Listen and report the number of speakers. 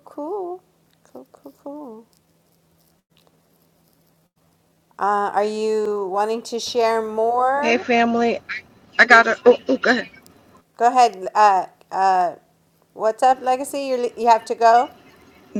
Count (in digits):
2